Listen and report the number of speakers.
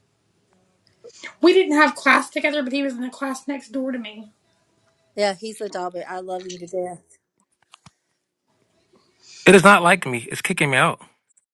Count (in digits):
3